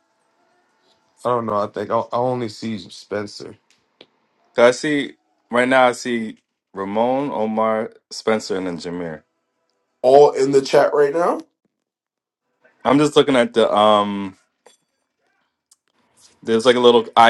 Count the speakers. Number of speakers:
three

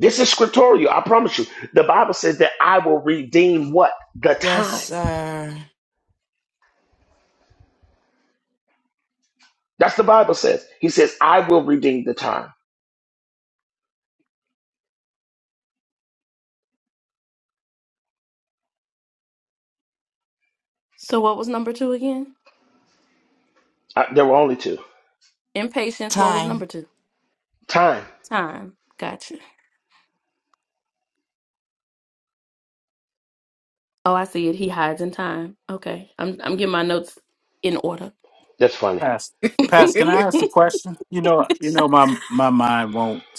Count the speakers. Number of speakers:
four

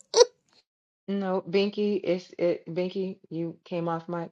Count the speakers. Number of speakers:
one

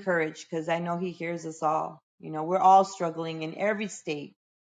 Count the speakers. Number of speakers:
one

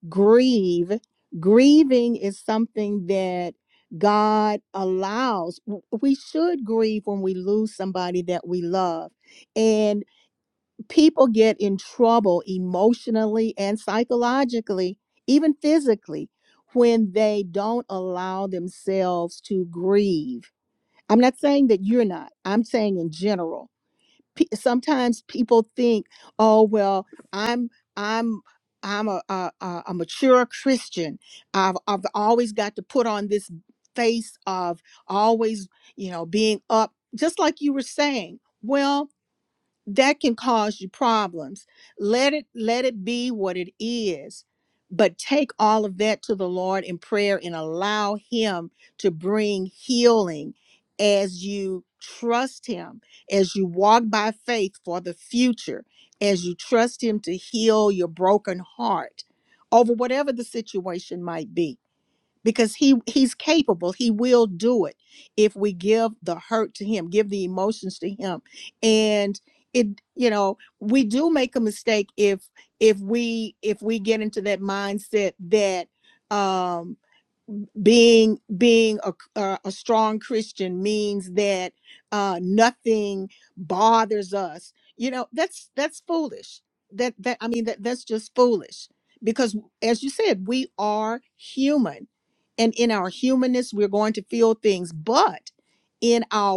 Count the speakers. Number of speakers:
one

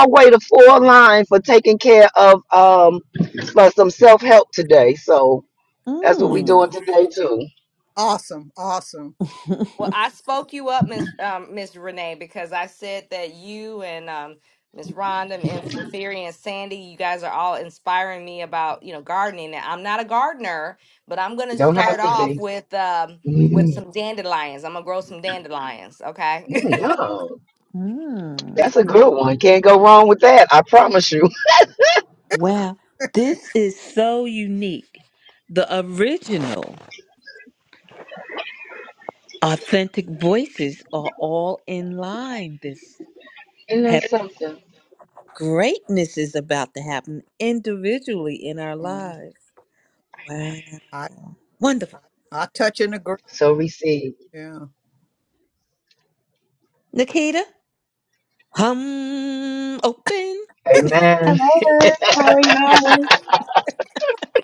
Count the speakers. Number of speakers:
five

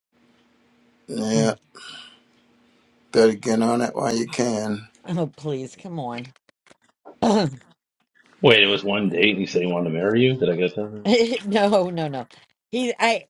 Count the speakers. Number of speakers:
three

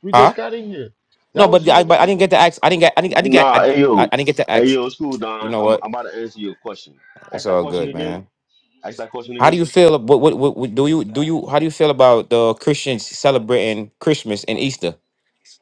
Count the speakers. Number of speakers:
three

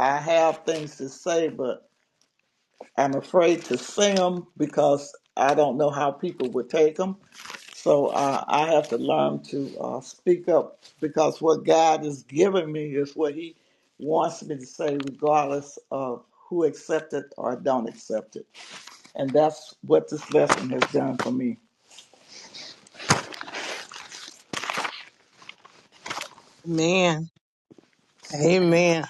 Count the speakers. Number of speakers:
two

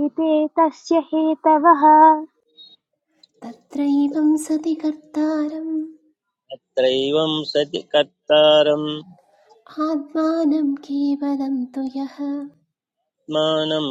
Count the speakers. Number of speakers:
three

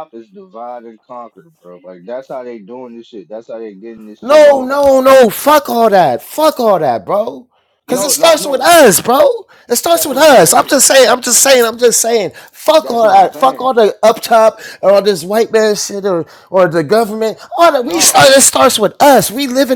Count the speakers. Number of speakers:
two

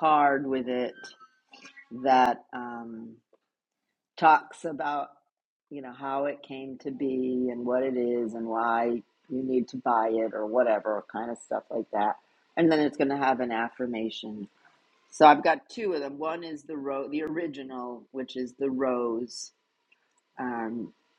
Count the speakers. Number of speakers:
one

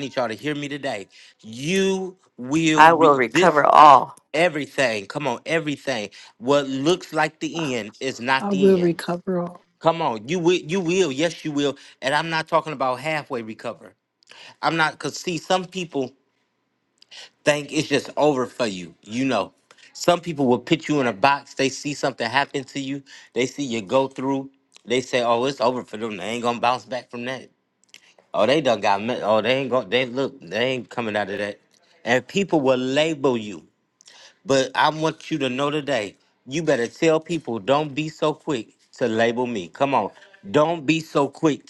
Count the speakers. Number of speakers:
three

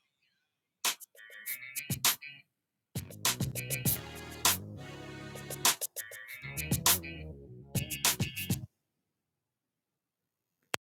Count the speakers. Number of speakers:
zero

